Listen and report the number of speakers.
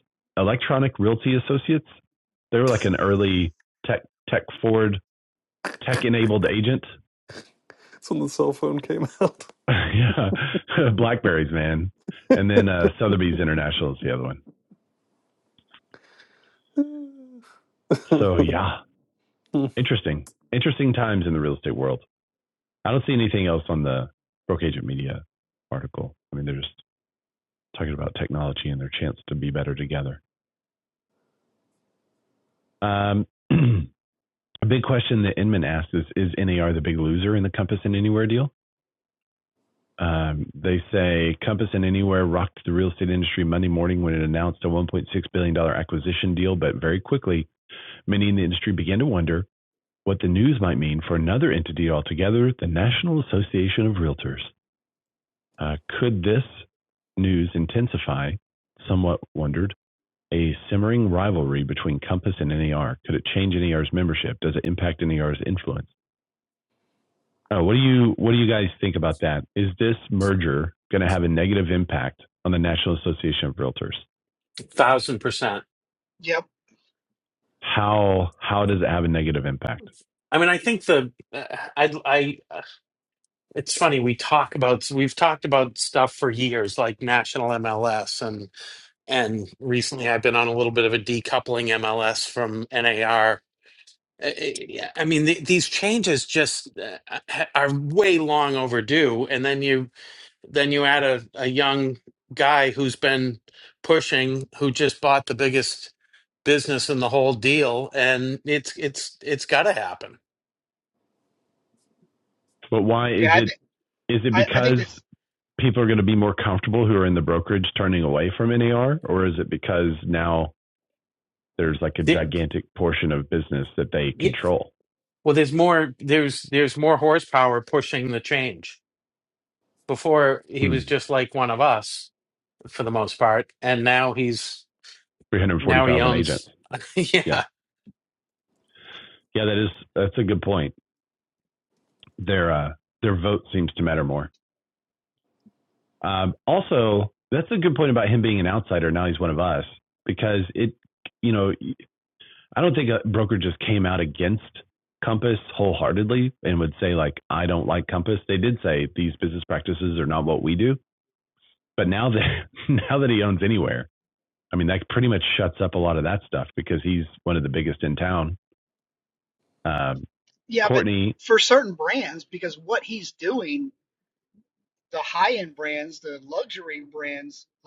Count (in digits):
4